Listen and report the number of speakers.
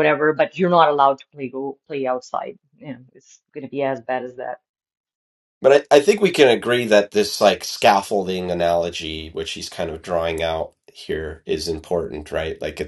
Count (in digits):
2